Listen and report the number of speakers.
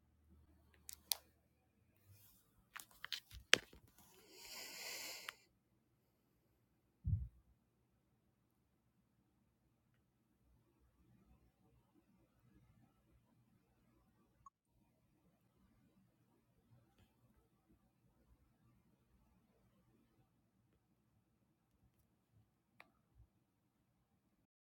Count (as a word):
zero